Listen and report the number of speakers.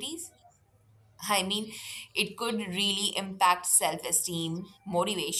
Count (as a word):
one